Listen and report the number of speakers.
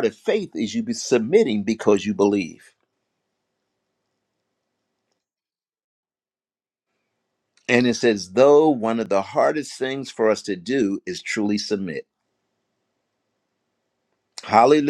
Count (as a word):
one